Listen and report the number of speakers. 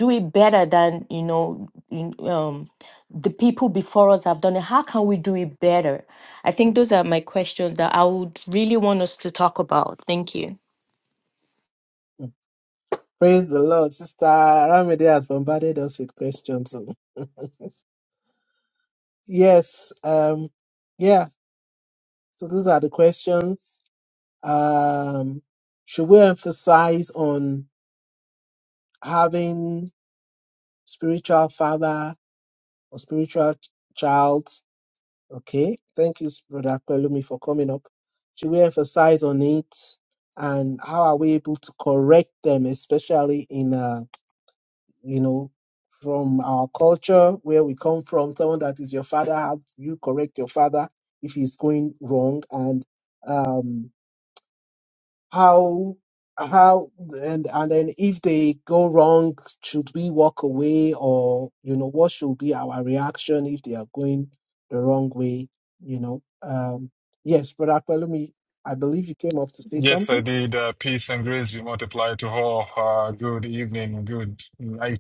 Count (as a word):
three